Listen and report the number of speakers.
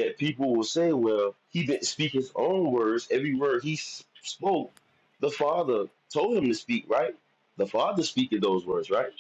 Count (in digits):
1